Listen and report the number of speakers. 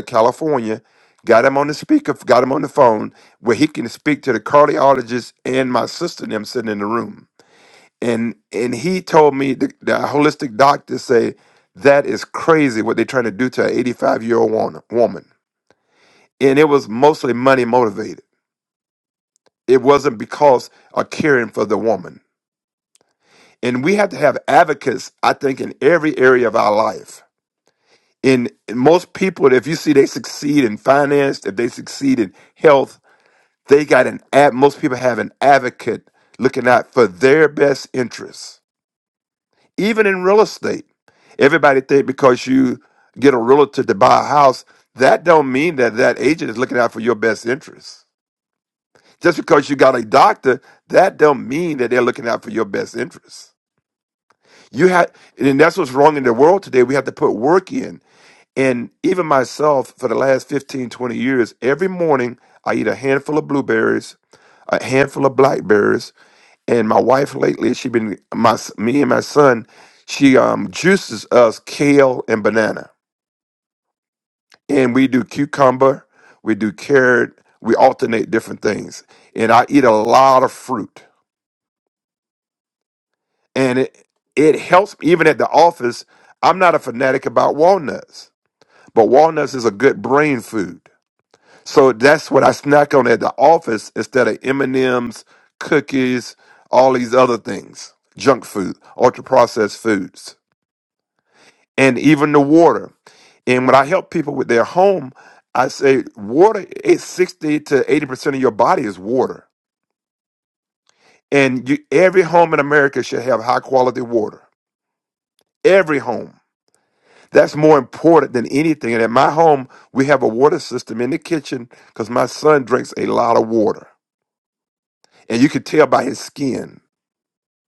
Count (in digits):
1